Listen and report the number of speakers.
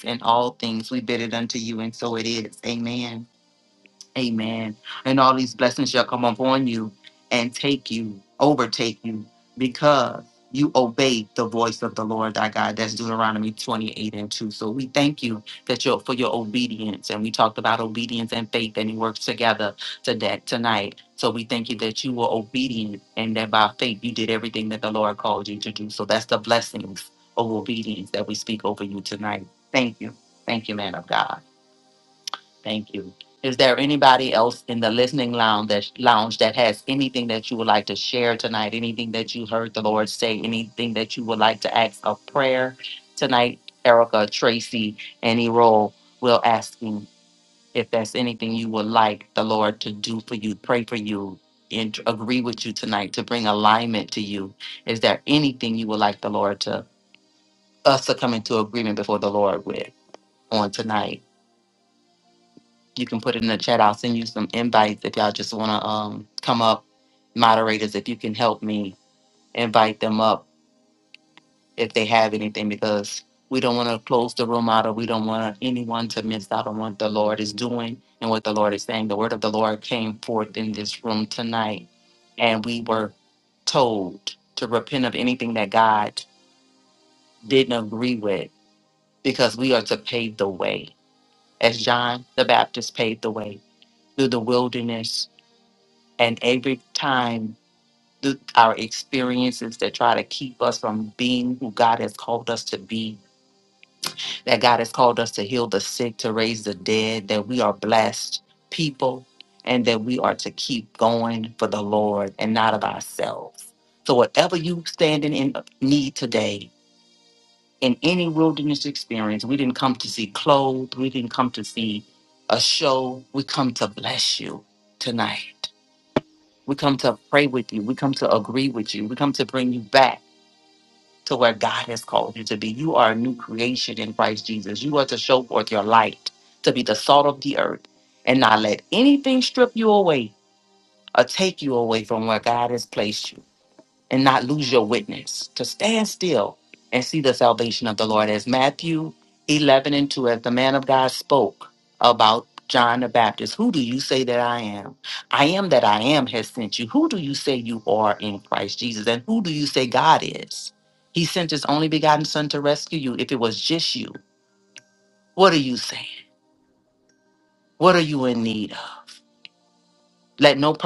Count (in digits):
1